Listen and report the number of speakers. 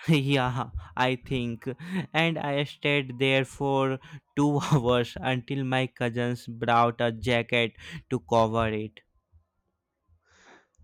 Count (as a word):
one